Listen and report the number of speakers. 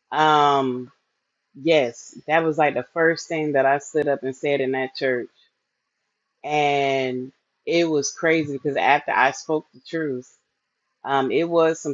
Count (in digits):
1